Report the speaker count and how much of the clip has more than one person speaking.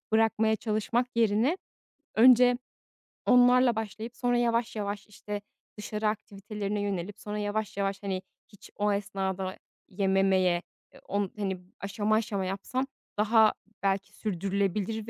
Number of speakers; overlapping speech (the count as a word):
one, no overlap